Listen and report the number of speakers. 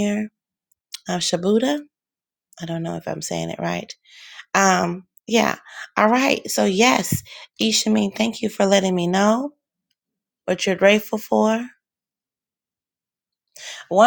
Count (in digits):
1